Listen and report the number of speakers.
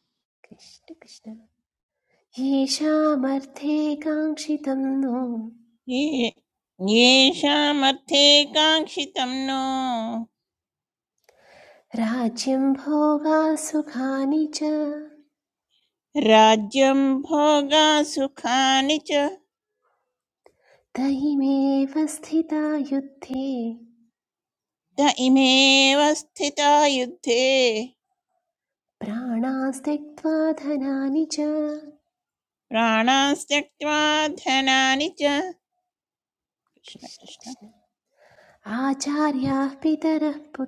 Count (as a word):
two